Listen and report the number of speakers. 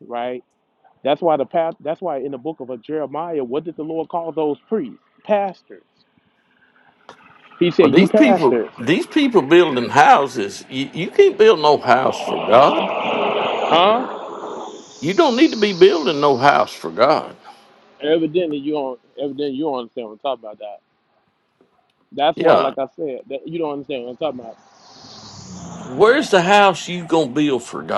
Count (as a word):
two